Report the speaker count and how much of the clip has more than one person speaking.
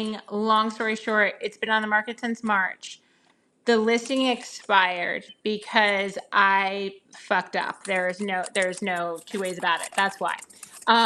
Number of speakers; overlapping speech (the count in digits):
1, no overlap